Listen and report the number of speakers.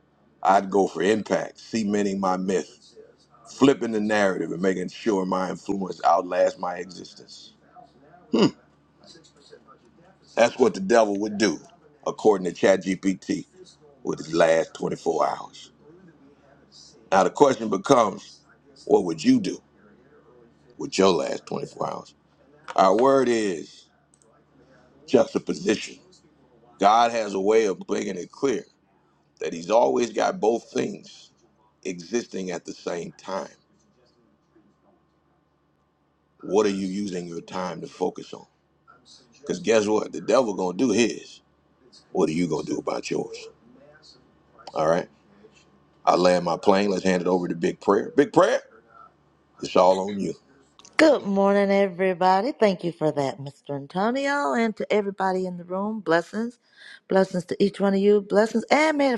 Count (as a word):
two